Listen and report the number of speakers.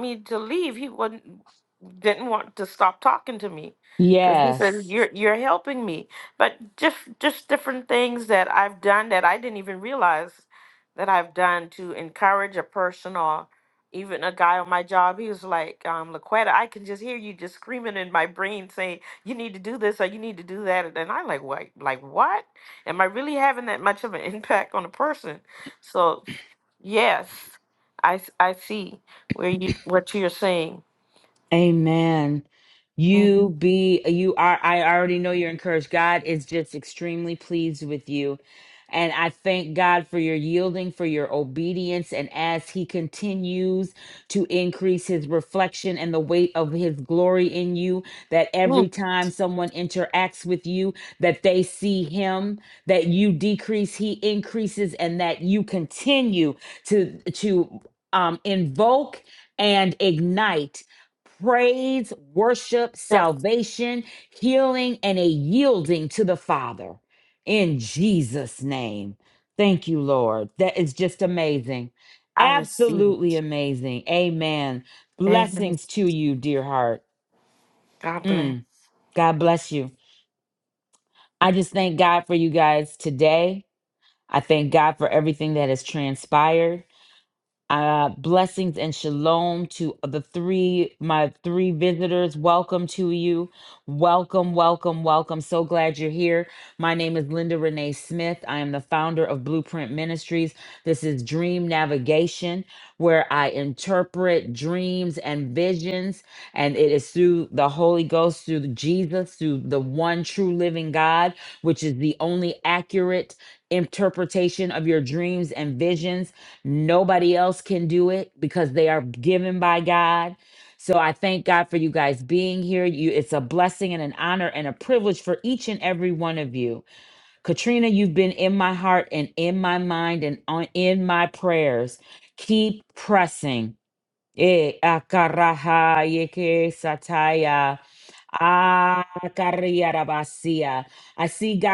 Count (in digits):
2